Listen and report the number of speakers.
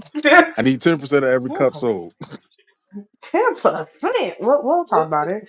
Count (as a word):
two